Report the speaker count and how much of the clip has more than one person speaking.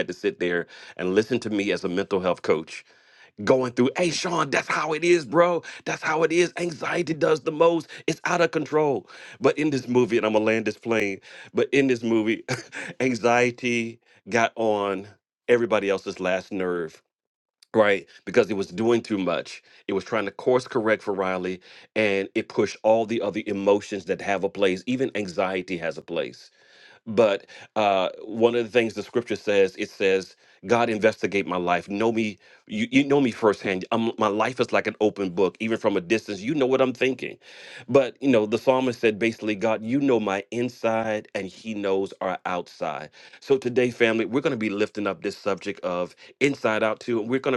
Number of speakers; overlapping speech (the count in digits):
1, no overlap